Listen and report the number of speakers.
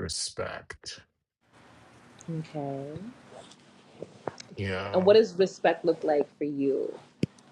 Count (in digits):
2